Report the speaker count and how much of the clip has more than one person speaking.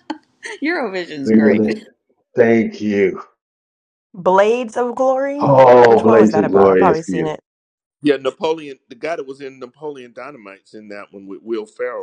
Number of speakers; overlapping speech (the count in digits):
4, about 16%